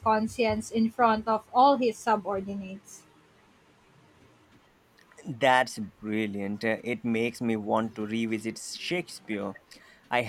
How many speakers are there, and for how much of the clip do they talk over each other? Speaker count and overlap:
2, no overlap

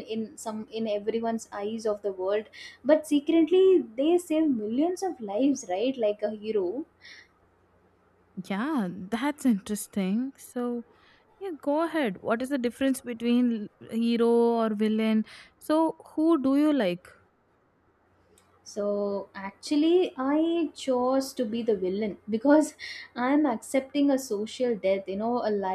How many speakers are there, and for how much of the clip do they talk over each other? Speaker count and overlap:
2, no overlap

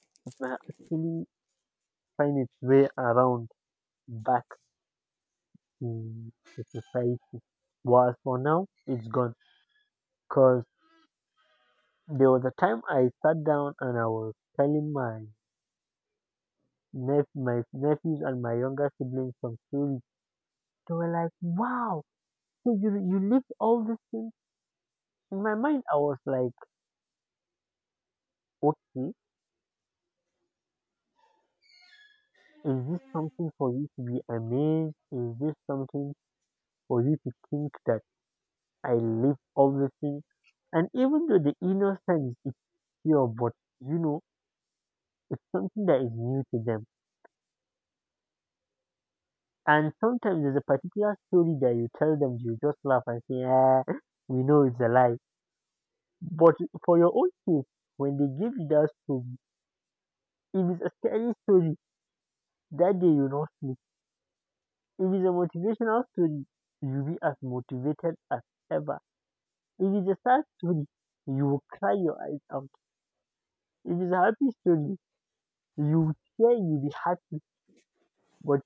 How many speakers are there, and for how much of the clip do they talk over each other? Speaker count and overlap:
1, no overlap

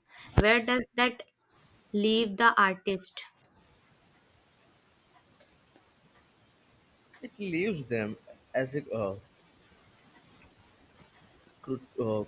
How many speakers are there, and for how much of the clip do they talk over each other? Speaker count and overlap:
2, no overlap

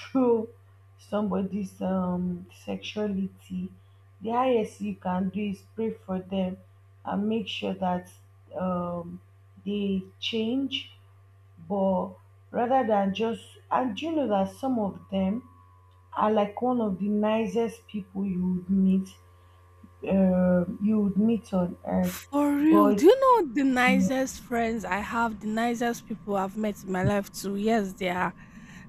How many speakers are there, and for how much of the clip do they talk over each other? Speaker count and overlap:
2, about 2%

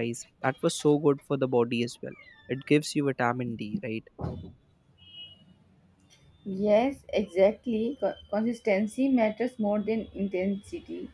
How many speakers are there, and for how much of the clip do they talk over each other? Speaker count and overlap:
2, no overlap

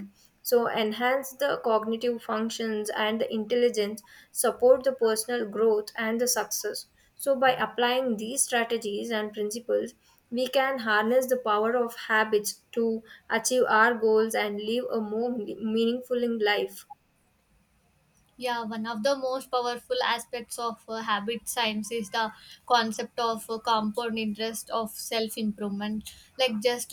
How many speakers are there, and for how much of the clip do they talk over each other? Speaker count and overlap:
2, no overlap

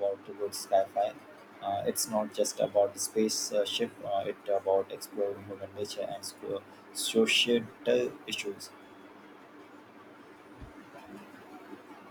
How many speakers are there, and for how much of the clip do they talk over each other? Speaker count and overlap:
1, no overlap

